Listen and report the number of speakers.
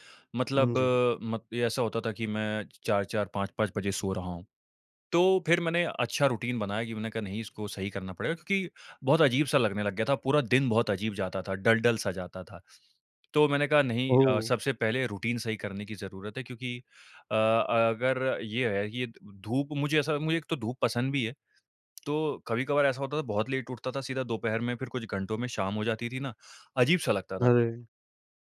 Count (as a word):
two